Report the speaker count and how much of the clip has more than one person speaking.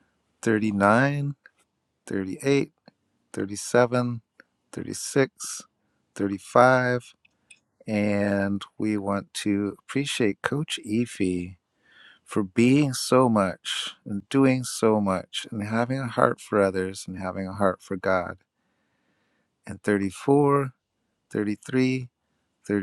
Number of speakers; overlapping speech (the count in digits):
1, no overlap